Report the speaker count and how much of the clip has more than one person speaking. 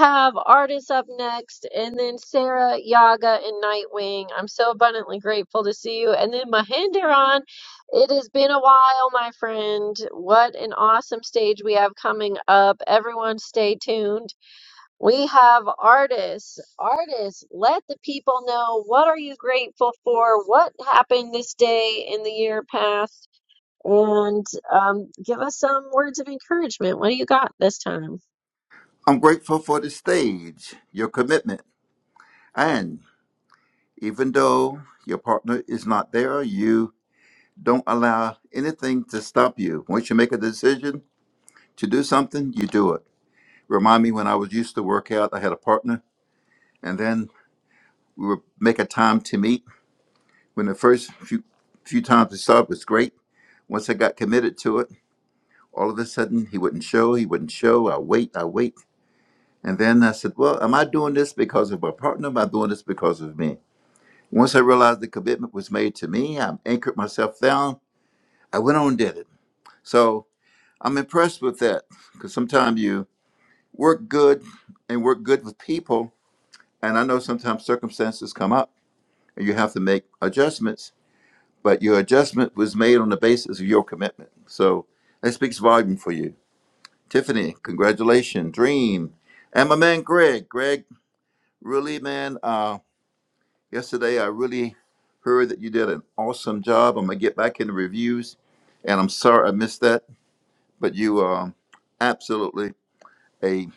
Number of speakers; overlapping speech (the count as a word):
two, no overlap